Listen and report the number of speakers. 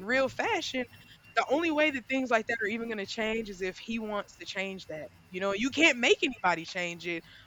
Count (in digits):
1